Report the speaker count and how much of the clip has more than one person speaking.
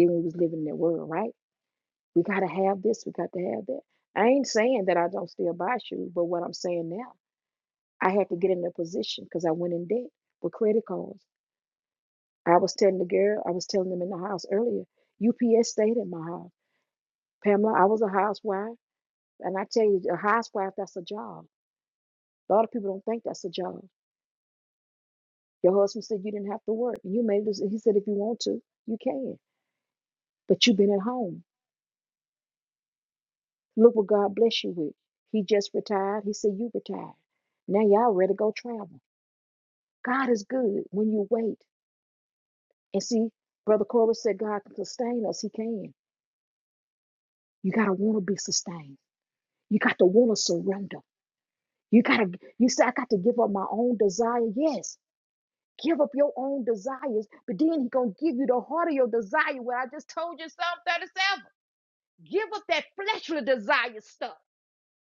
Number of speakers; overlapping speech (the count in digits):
1, no overlap